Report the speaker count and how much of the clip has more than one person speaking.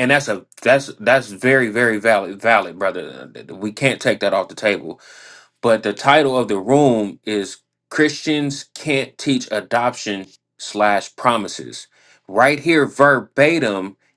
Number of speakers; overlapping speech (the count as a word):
one, no overlap